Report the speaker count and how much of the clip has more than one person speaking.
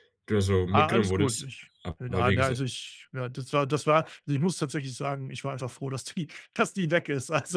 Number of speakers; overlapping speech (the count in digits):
2, about 17%